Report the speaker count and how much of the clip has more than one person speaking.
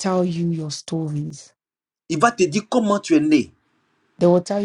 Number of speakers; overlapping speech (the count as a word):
two, no overlap